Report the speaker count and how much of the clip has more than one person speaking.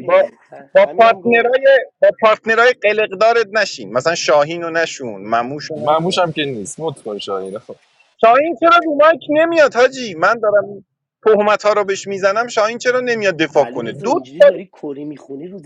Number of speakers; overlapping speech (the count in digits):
3, about 16%